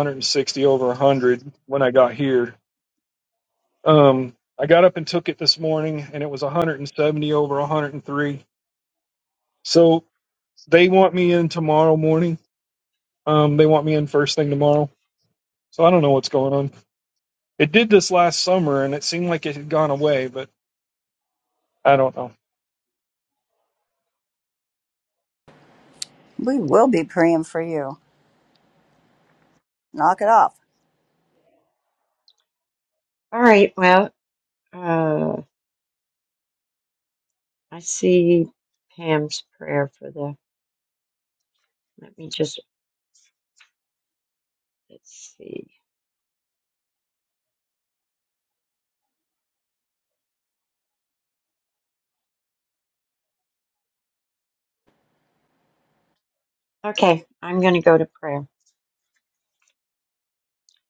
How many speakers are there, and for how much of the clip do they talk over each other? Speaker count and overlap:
3, no overlap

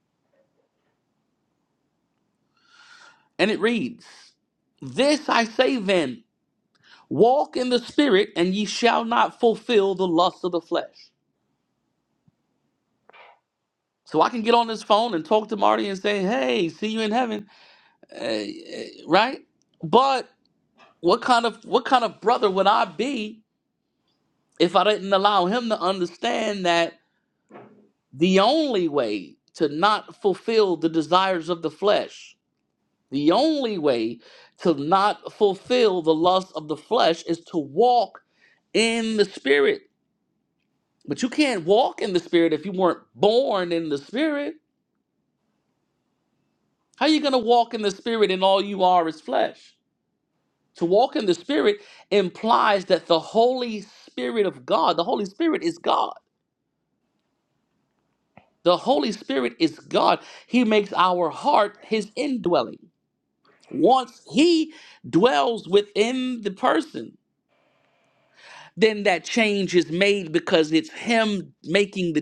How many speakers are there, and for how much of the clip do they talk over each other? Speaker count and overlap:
1, no overlap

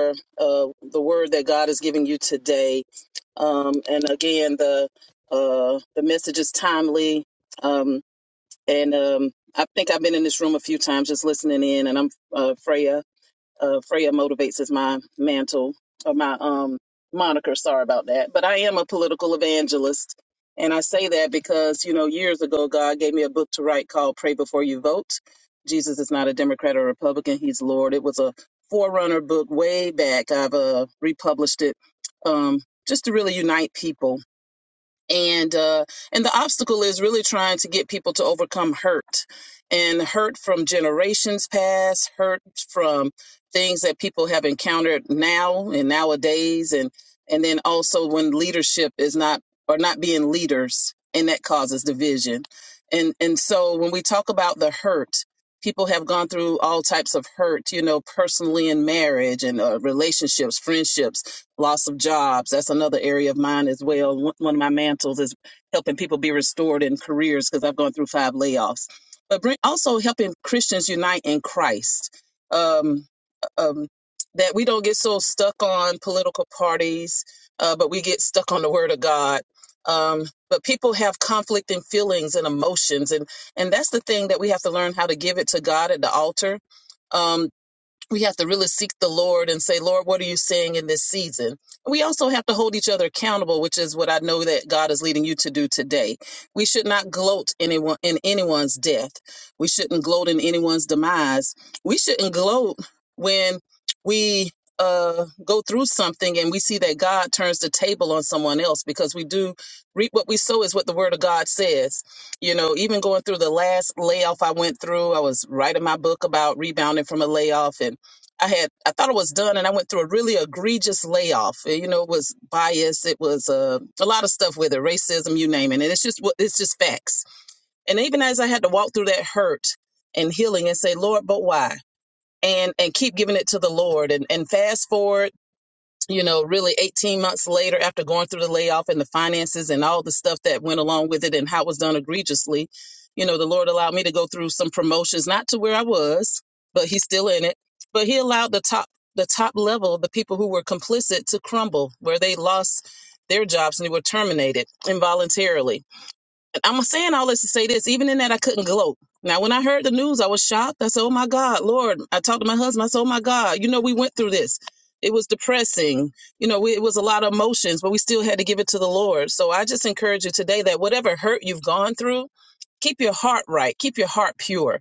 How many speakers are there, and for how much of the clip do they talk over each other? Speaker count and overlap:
1, no overlap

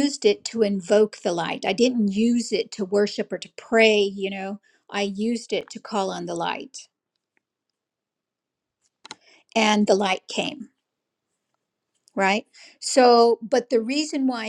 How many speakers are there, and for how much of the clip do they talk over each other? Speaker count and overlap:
1, no overlap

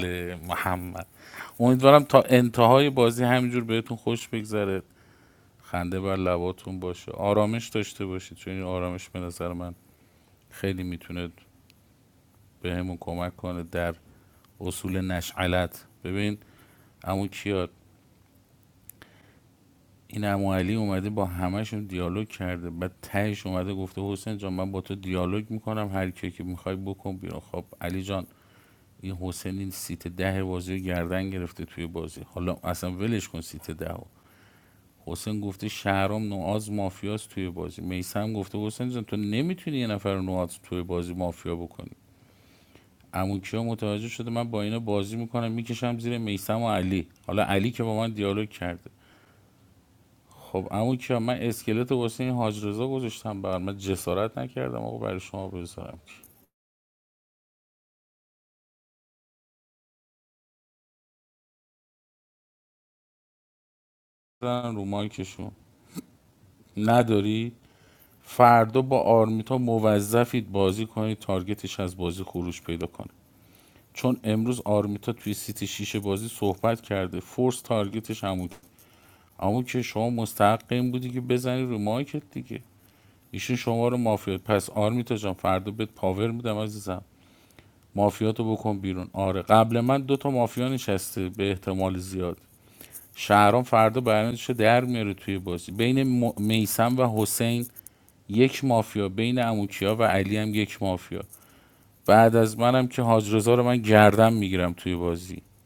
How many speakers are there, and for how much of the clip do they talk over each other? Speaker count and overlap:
1, no overlap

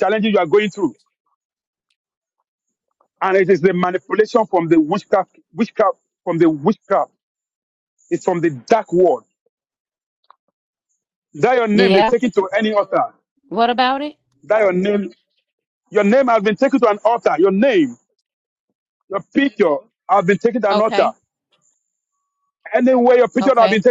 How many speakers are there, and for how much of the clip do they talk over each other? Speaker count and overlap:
2, about 5%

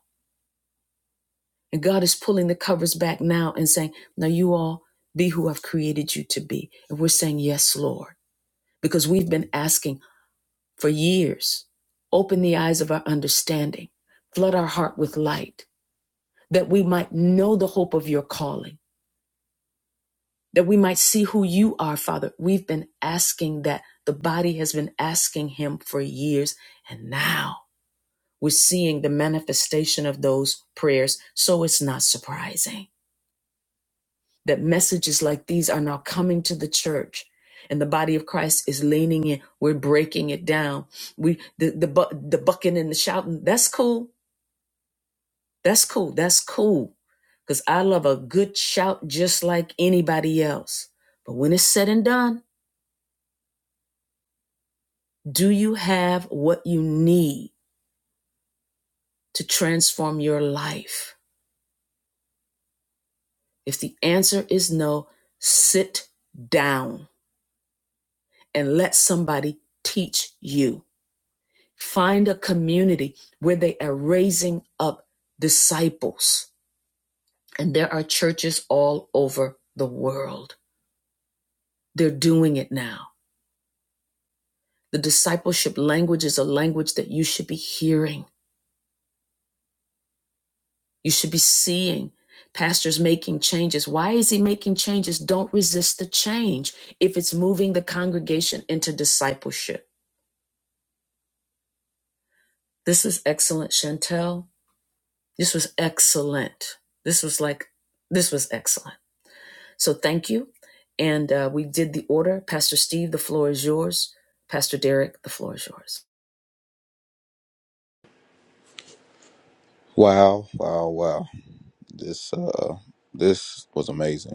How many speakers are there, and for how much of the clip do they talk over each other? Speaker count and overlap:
2, no overlap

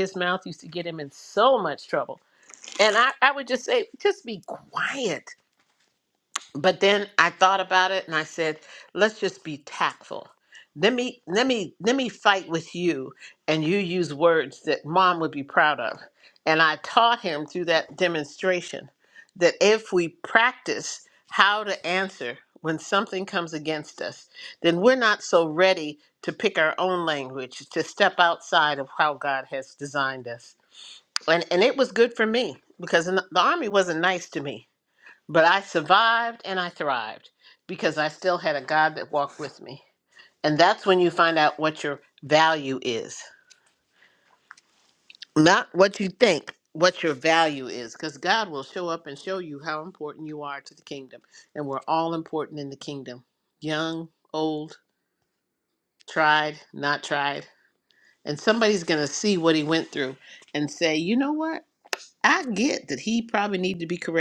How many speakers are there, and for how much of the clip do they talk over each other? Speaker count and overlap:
1, no overlap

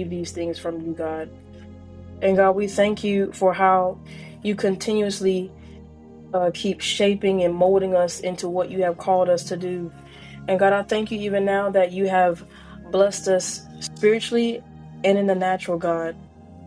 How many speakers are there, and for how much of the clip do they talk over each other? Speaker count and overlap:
1, no overlap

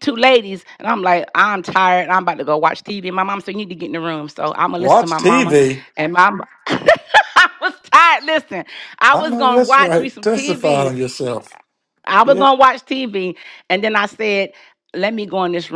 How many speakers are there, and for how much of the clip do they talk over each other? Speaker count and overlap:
2, about 18%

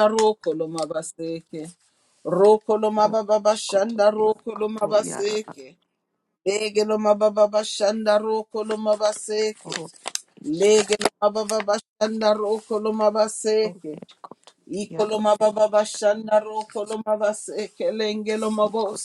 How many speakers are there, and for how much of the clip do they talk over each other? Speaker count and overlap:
2, about 25%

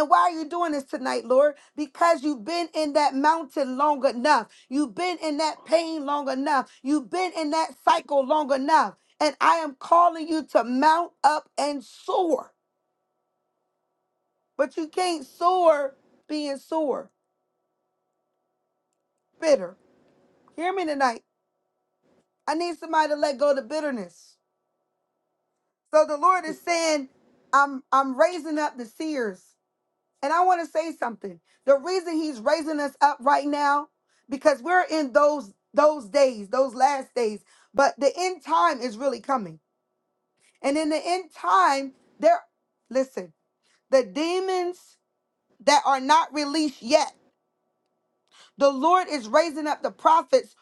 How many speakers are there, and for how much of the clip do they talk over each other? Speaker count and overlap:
1, no overlap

